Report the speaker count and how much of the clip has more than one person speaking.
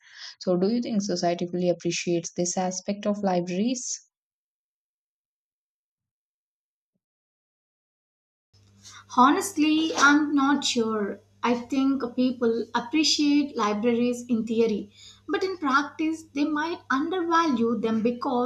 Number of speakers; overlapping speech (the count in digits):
2, no overlap